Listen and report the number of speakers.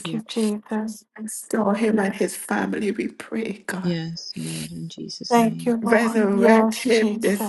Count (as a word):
three